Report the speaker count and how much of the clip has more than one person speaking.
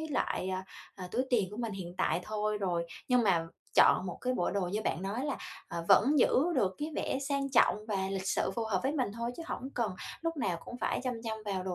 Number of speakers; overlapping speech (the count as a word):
one, no overlap